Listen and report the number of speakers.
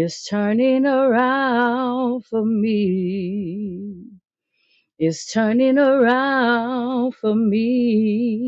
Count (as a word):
one